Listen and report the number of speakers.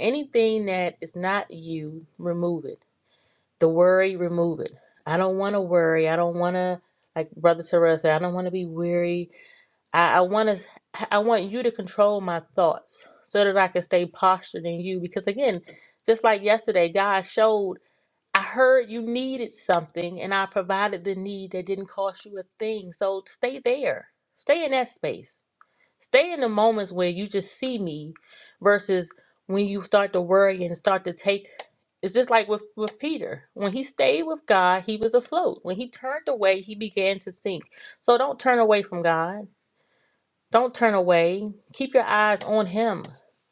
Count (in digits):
1